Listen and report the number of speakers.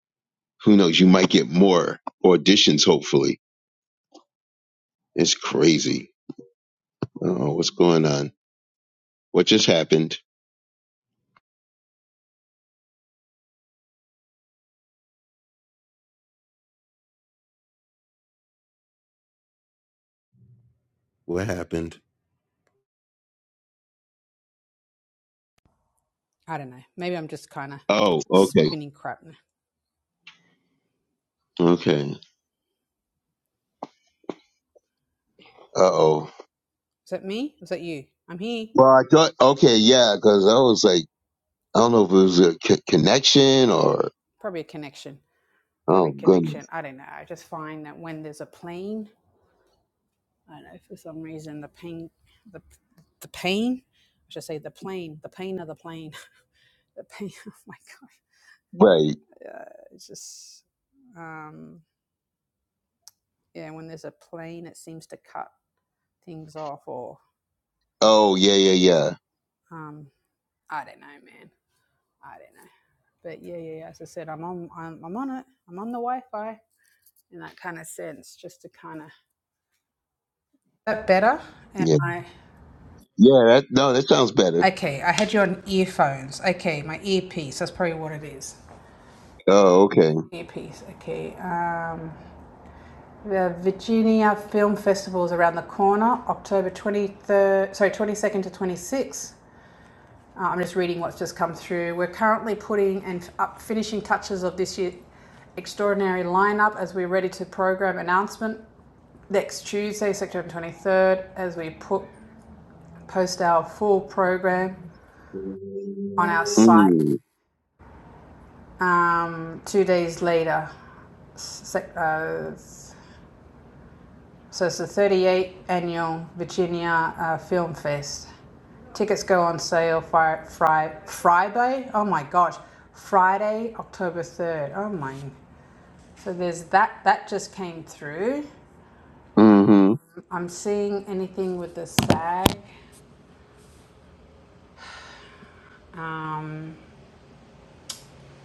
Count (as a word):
two